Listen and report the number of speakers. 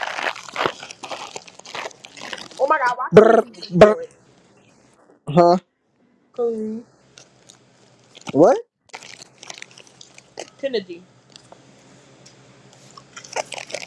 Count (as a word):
two